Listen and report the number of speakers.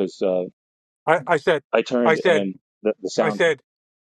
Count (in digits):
2